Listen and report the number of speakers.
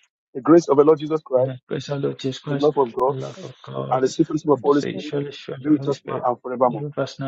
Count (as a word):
two